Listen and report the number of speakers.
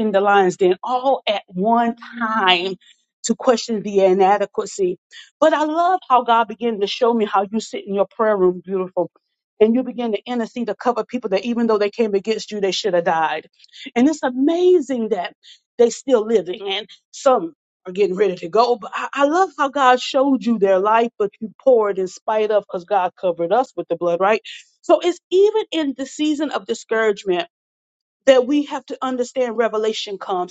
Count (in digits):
1